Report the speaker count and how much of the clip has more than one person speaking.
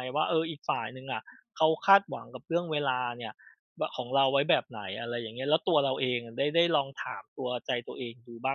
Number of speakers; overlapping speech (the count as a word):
one, no overlap